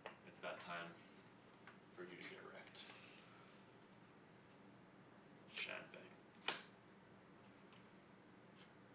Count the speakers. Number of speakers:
one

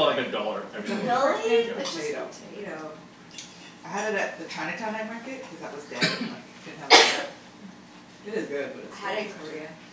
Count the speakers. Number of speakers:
three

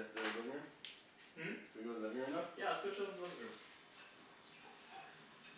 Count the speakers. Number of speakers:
two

